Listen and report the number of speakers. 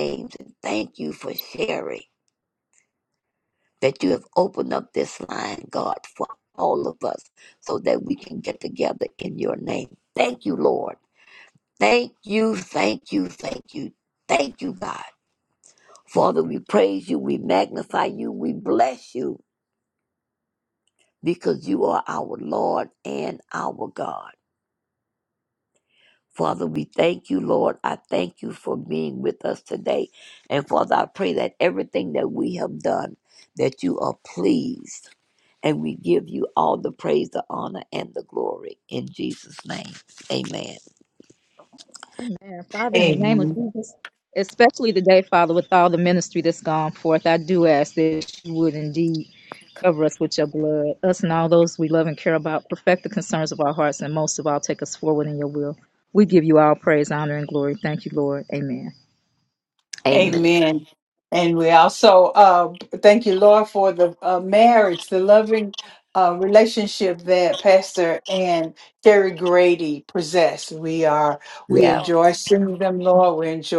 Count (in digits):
3